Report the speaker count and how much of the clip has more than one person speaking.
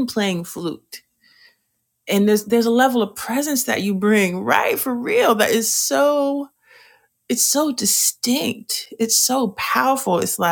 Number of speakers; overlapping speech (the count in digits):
1, no overlap